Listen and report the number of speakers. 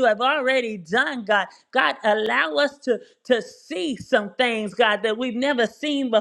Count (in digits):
1